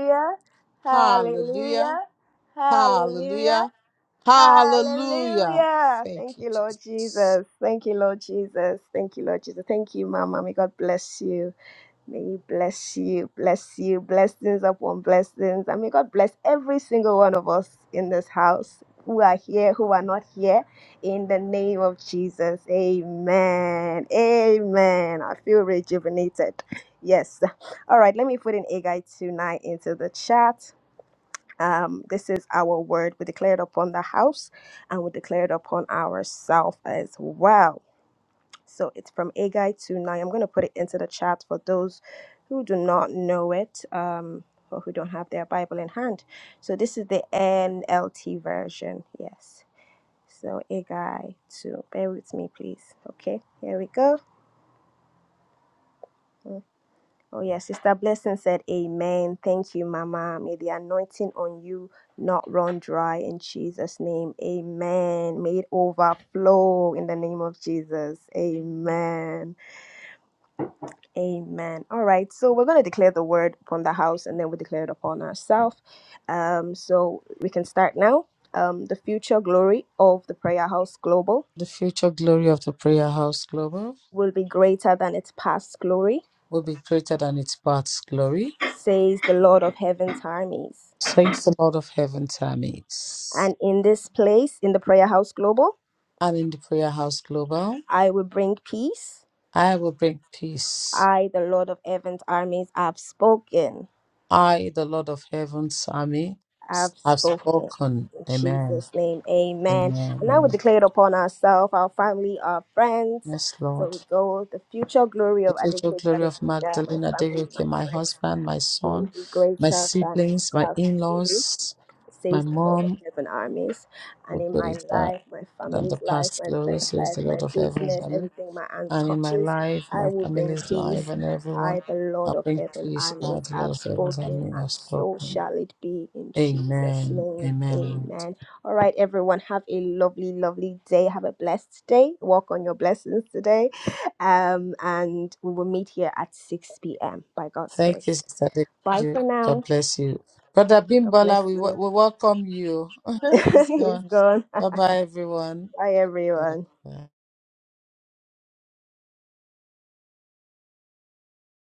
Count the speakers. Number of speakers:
2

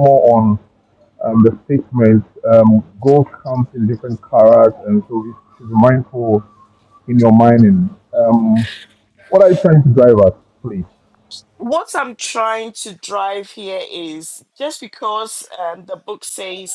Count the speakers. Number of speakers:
2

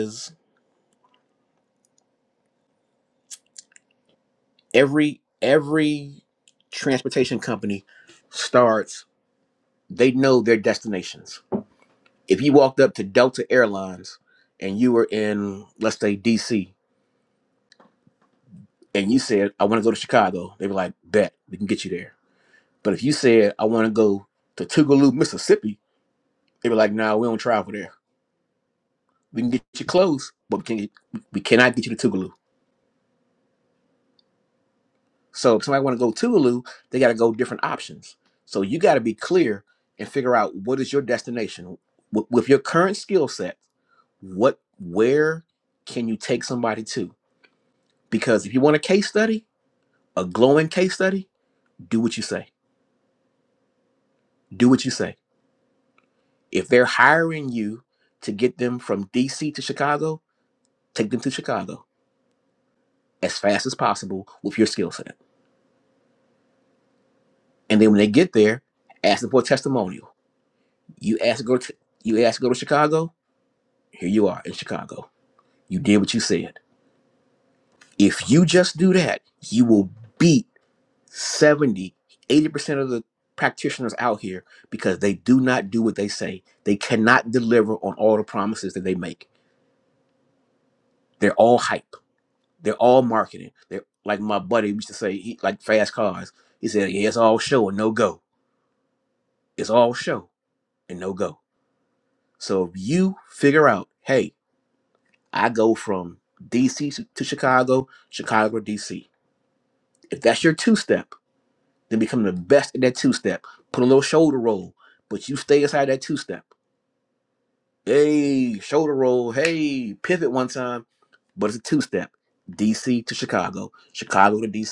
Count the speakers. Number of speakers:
1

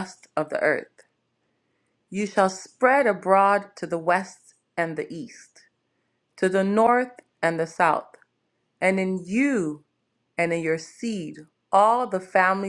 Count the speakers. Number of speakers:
1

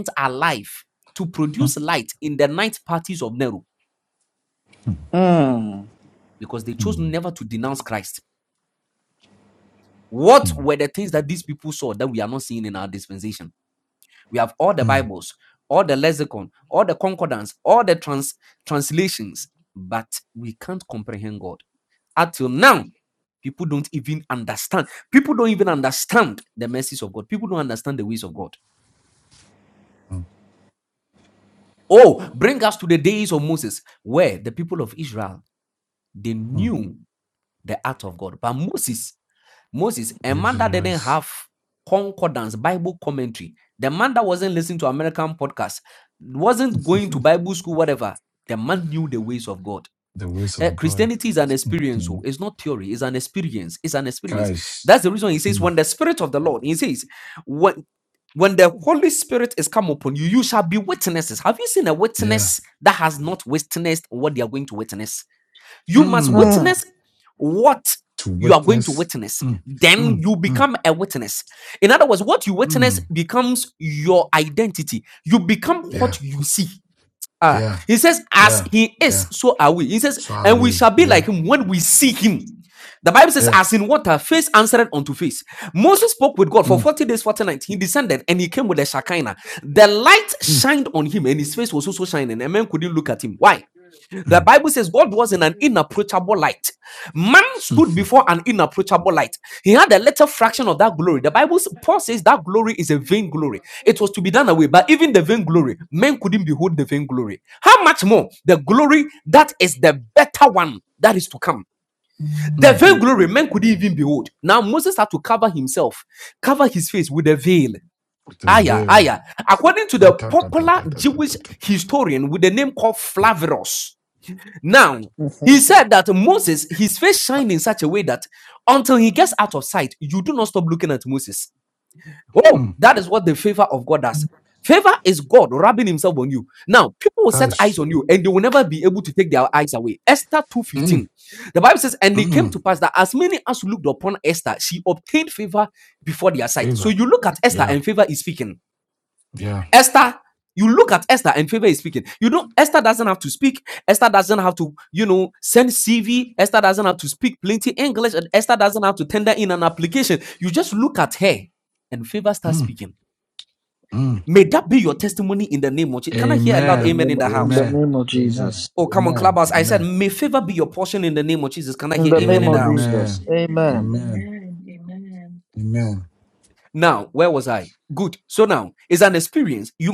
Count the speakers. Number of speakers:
4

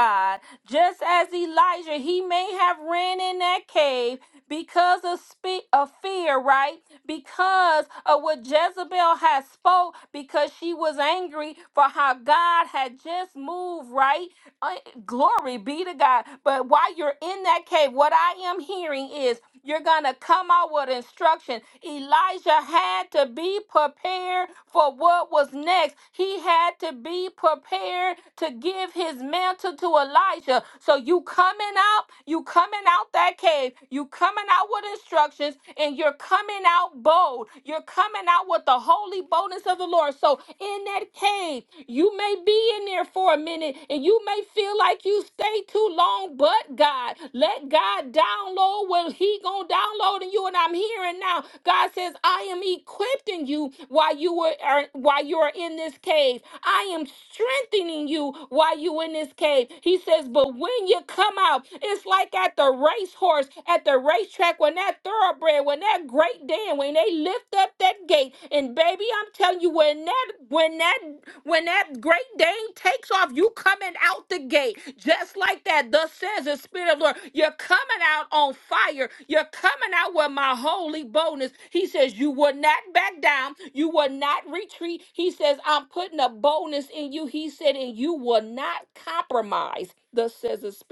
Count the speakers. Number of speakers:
1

